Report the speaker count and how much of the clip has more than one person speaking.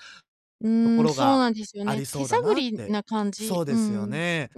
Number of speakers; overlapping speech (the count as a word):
two, about 54%